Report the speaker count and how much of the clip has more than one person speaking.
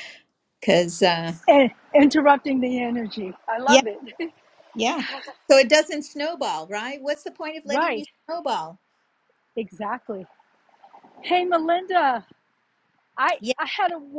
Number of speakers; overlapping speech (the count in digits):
2, about 4%